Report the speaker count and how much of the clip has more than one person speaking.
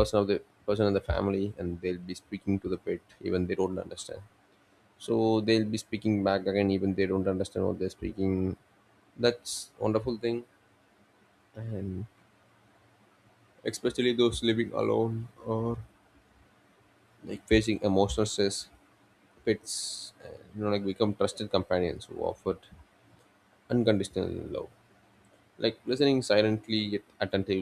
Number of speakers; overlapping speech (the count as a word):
one, no overlap